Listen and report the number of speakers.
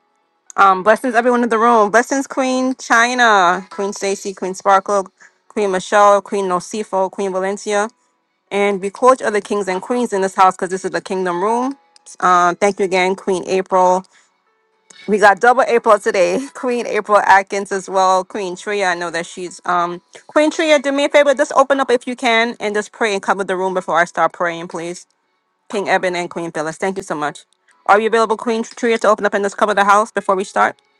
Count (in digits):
1